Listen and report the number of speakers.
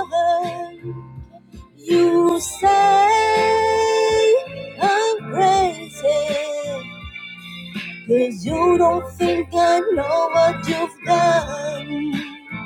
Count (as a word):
one